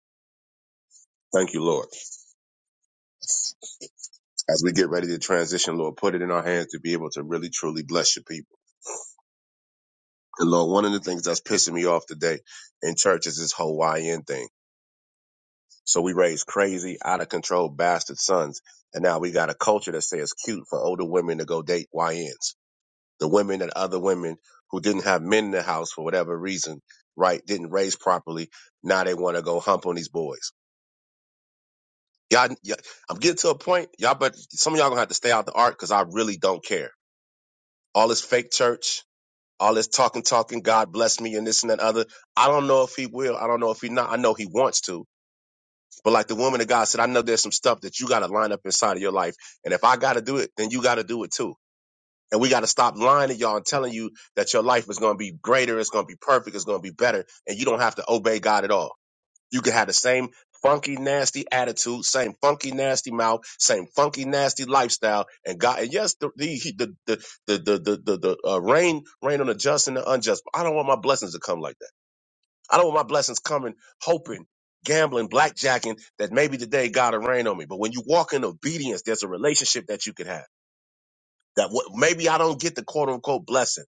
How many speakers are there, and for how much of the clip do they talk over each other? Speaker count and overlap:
one, no overlap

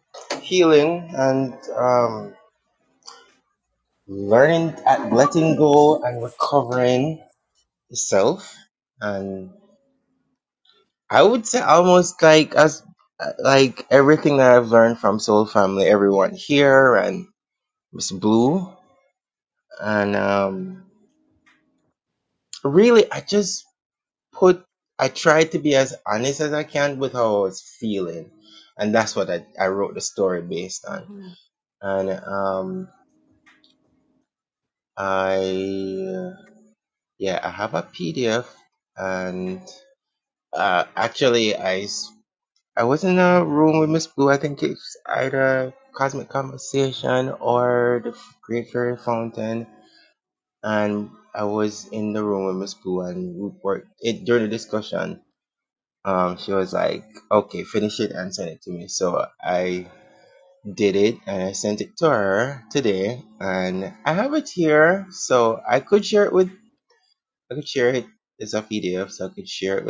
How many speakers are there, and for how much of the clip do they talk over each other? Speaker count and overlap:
one, no overlap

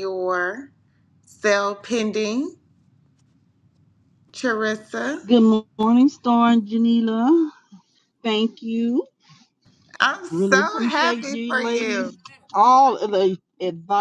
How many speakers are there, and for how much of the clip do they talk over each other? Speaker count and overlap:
two, about 13%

